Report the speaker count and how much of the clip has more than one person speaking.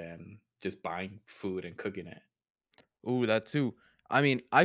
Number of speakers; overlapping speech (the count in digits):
2, no overlap